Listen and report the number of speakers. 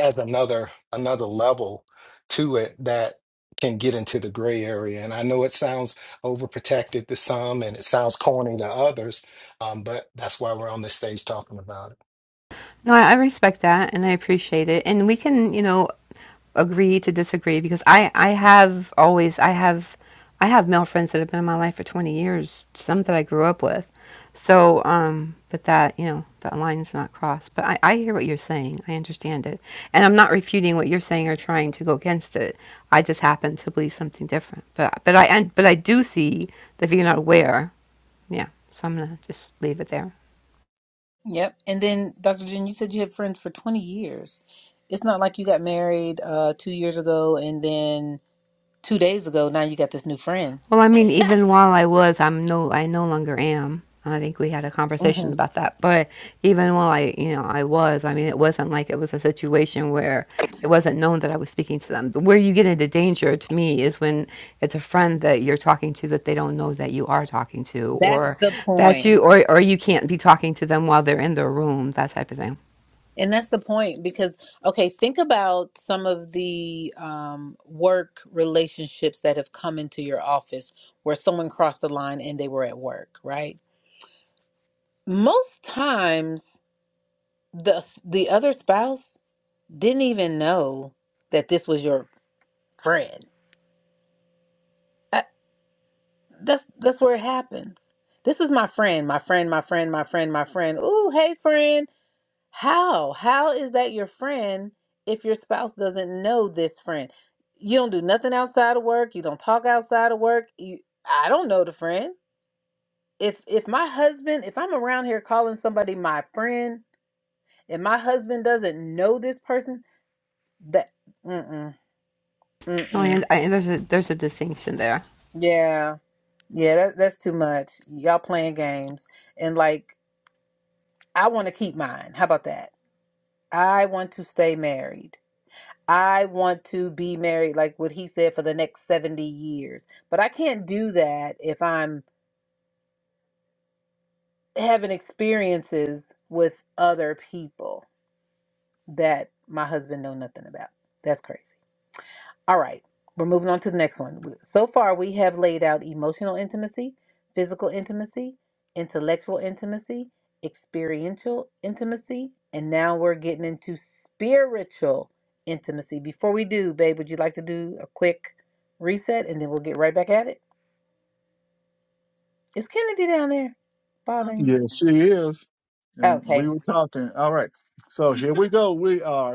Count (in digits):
4